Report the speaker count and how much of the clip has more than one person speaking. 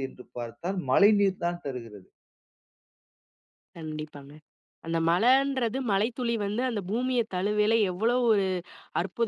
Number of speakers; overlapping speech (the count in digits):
2, no overlap